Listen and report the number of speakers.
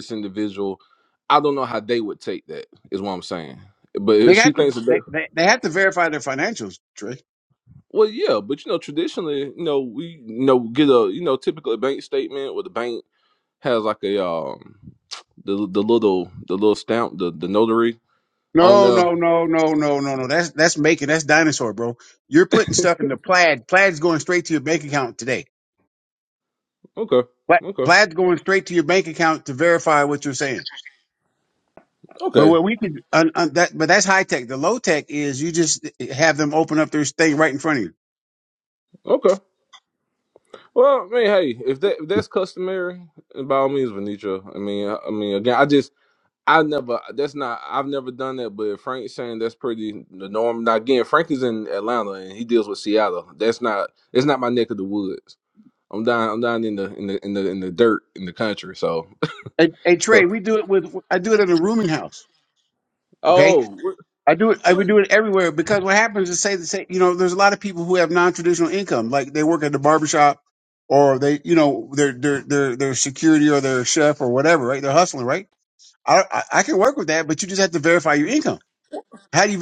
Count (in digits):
2